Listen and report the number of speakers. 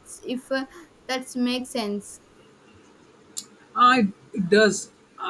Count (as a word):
two